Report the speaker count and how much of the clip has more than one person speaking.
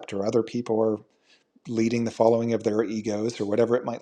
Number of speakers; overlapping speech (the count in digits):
1, no overlap